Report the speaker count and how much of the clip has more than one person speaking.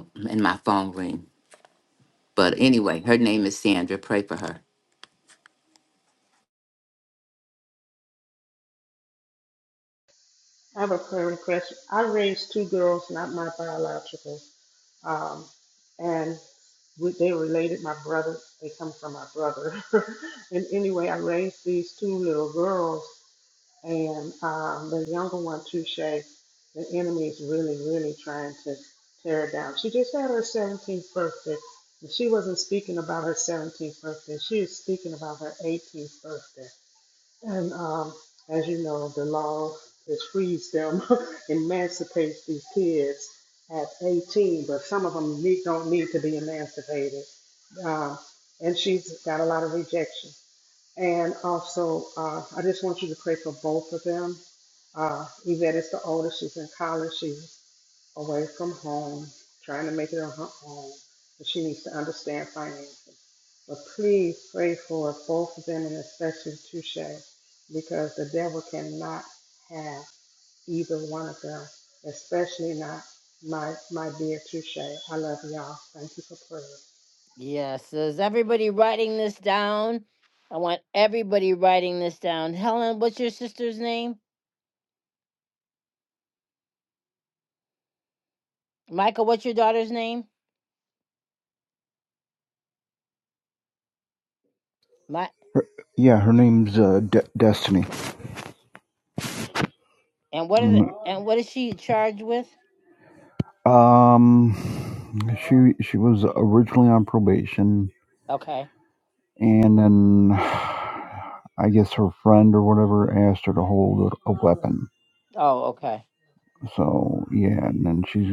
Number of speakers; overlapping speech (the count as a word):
four, under 1%